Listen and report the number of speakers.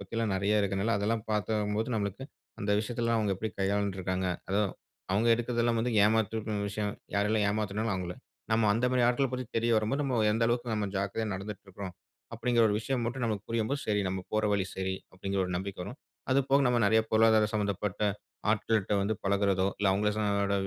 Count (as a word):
one